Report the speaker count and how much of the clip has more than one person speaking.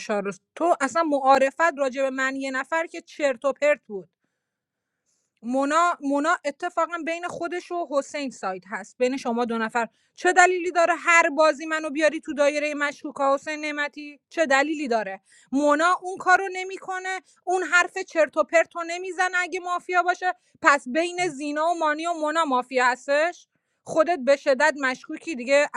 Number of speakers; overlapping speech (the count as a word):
one, no overlap